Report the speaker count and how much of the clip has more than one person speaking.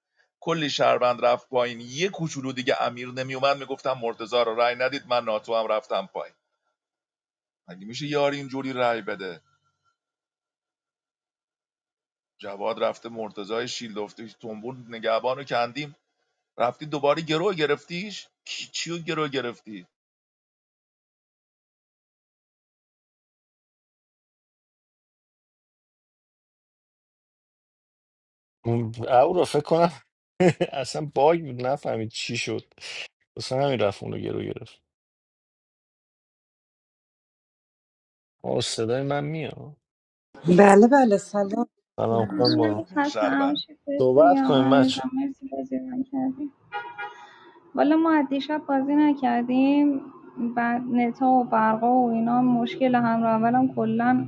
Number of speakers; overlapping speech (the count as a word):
four, about 4%